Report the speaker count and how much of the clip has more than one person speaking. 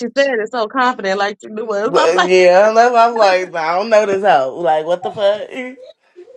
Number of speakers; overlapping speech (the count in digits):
2, about 7%